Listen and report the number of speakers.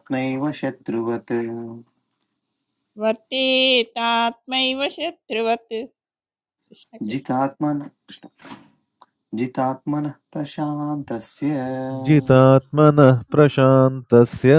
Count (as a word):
three